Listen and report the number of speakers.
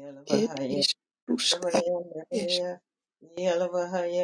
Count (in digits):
2